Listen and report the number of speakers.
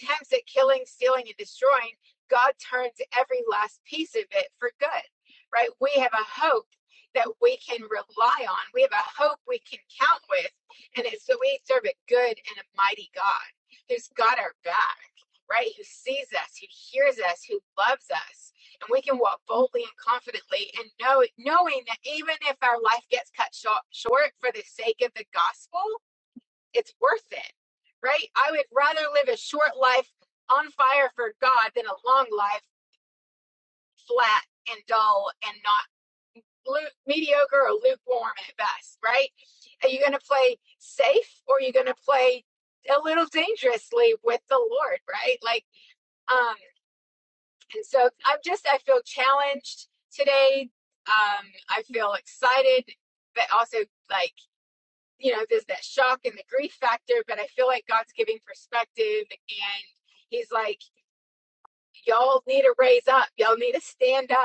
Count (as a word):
one